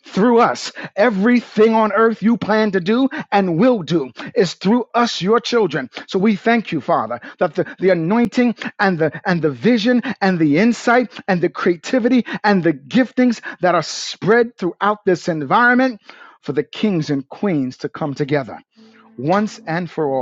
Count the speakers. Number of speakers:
1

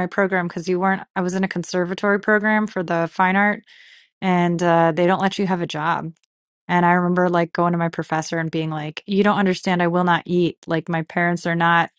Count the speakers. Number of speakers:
1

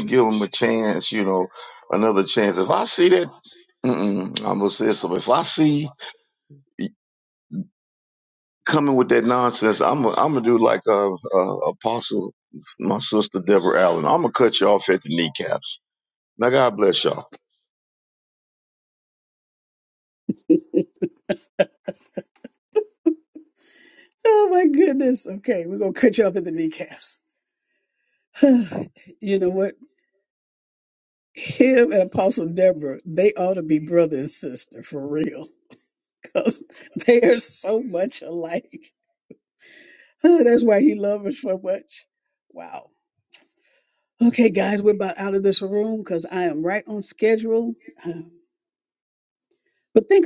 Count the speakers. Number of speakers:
2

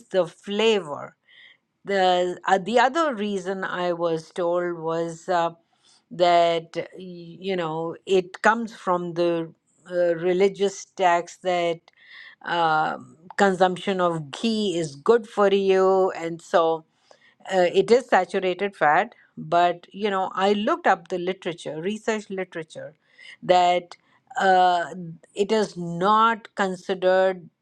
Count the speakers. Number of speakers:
1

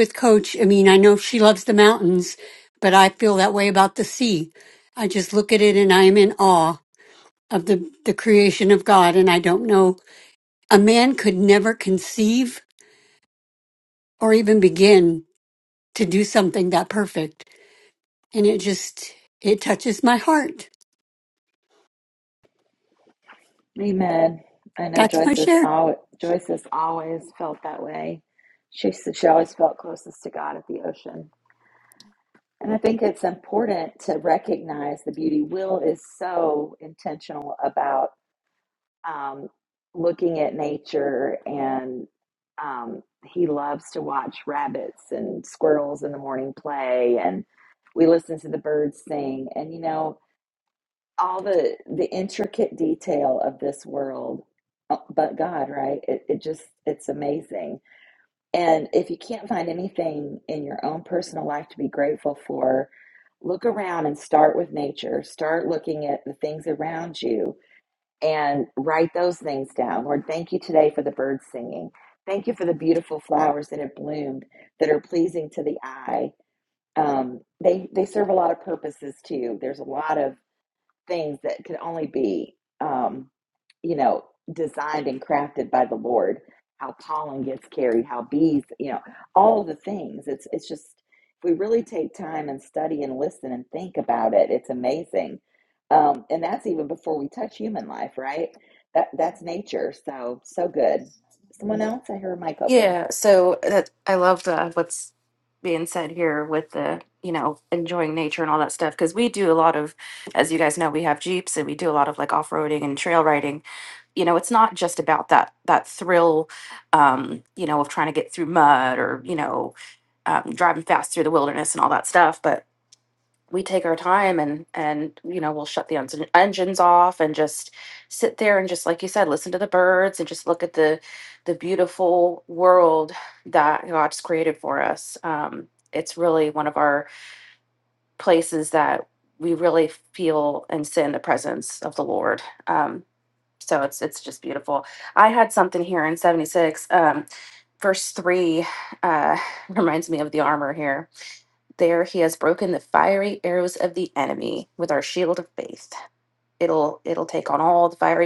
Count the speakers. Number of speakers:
3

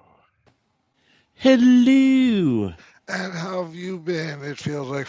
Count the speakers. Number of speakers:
2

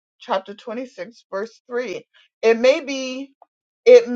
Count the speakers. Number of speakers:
1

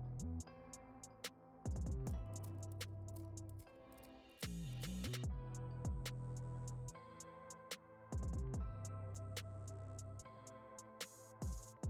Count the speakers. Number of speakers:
0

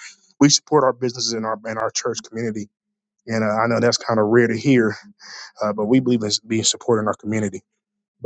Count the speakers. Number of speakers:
1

